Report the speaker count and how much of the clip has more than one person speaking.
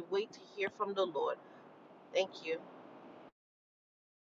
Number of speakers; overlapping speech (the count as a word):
one, no overlap